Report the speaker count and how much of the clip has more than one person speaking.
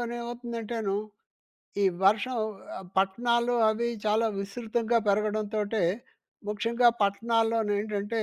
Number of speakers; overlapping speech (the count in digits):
1, no overlap